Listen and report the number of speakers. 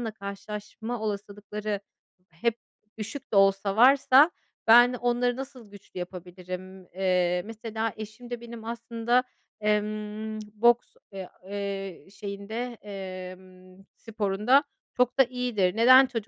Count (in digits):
1